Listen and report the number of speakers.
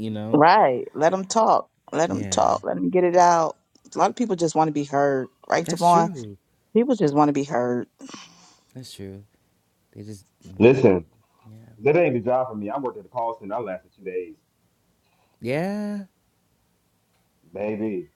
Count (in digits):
3